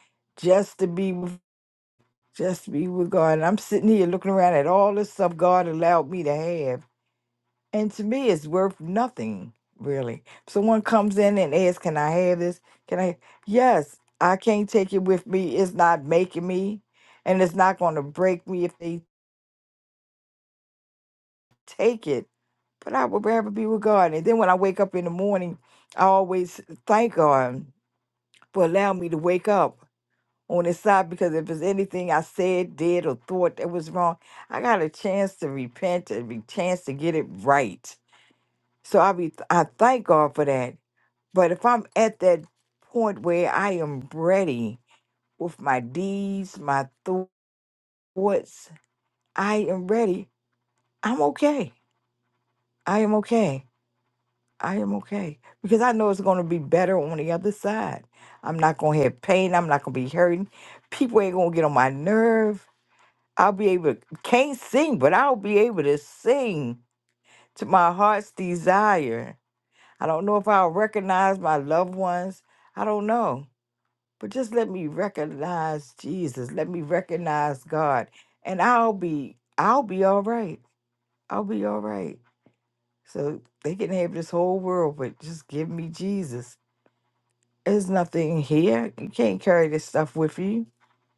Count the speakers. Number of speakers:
one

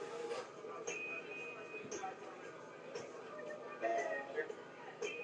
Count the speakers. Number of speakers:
zero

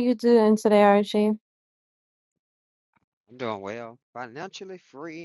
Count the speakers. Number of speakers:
two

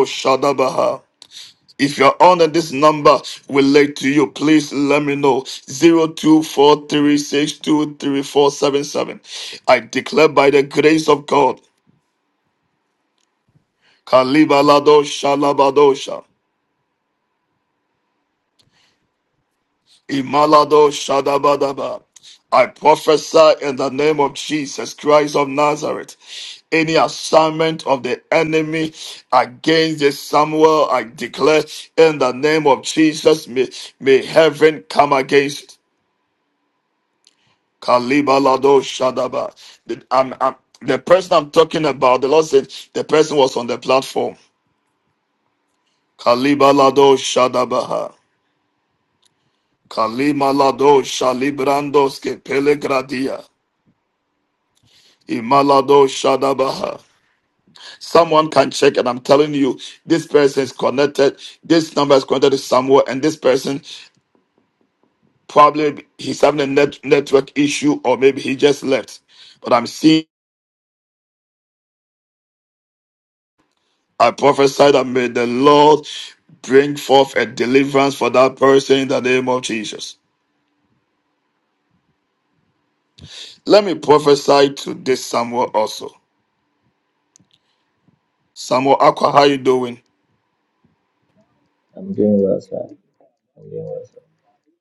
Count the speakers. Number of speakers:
two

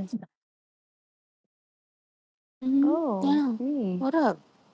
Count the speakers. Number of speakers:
two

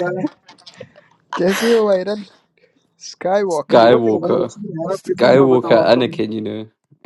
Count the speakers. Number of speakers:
three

